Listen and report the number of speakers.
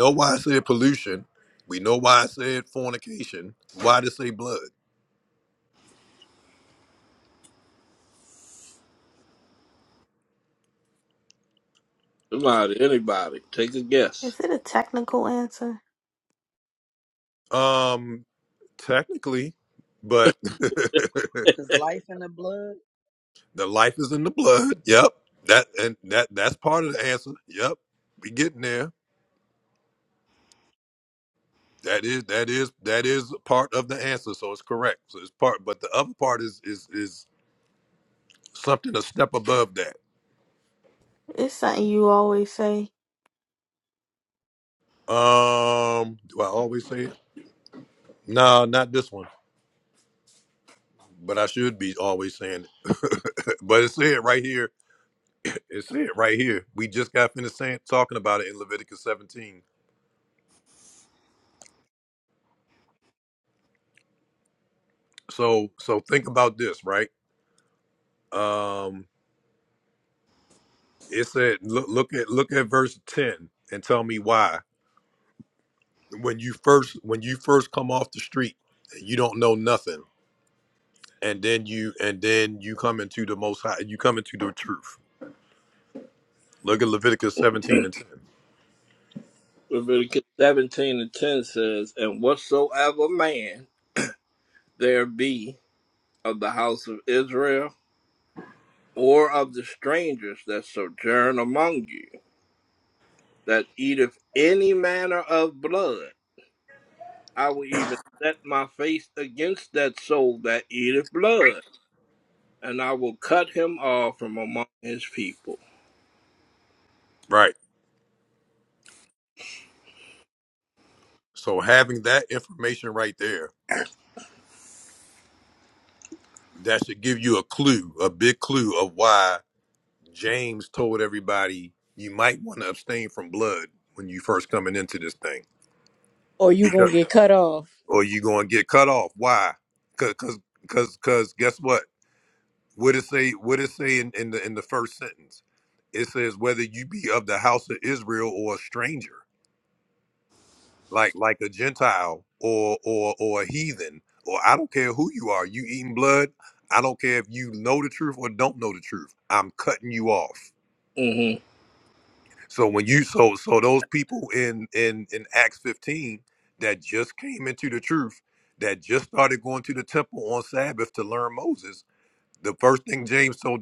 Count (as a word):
five